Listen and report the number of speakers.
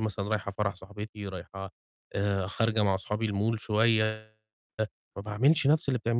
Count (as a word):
one